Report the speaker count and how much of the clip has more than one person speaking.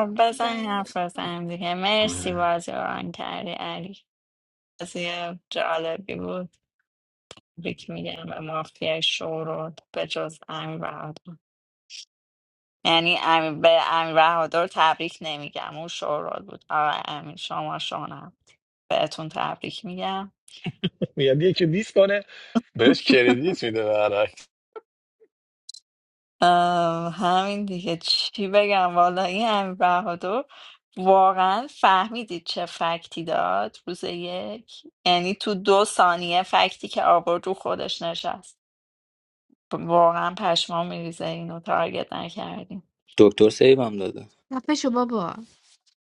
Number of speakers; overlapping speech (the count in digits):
4, about 3%